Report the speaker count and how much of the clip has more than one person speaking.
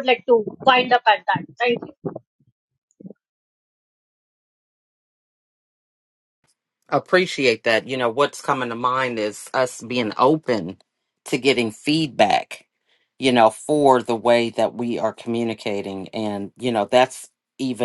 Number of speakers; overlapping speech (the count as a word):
two, no overlap